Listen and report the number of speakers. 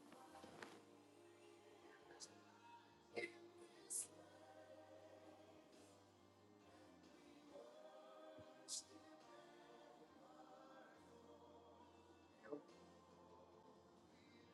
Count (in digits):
0